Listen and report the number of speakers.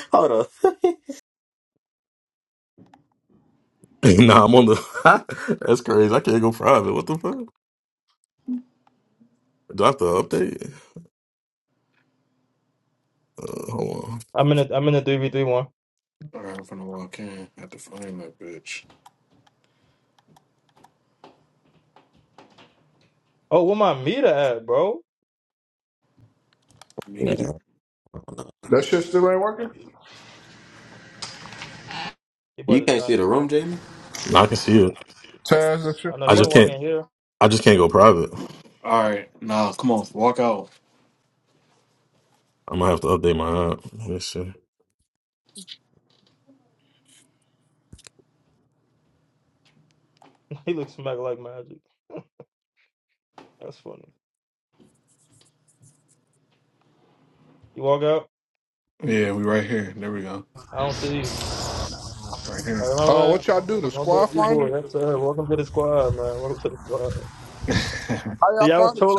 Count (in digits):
5